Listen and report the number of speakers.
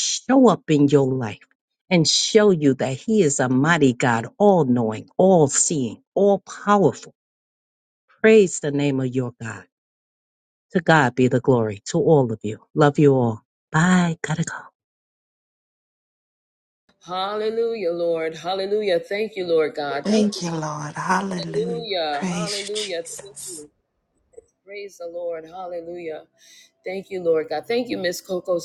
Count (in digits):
3